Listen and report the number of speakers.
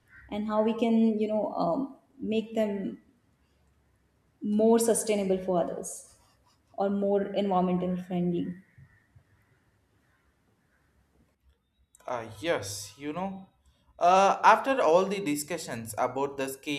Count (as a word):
two